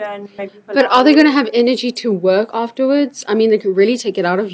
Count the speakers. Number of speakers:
2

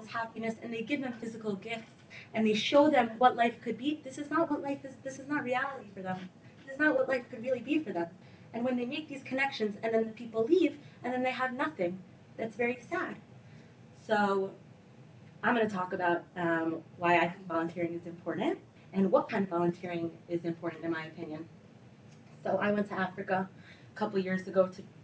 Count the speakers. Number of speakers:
1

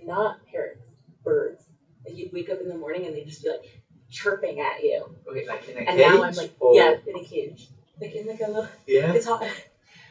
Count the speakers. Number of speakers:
2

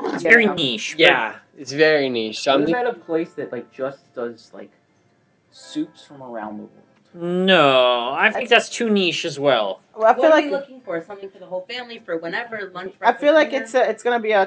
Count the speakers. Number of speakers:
5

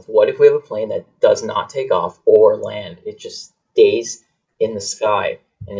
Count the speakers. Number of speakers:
1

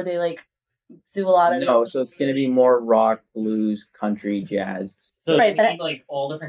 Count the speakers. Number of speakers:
3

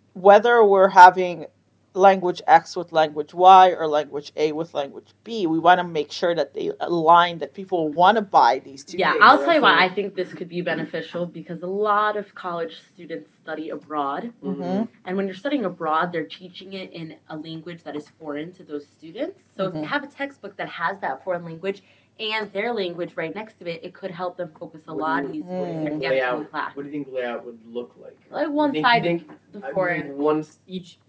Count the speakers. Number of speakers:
3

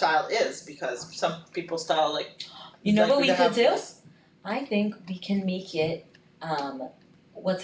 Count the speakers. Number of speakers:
2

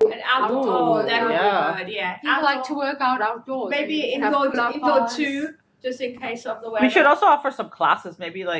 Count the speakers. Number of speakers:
3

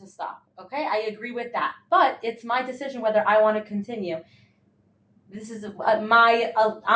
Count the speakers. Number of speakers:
1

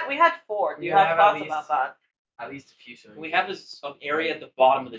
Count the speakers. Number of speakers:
3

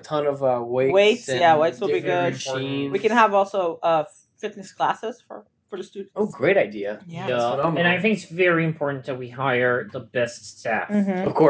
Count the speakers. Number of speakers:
3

